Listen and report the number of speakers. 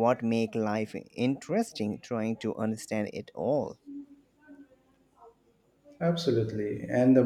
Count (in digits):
2